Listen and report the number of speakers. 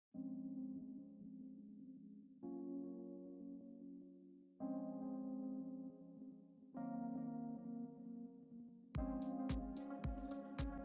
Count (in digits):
0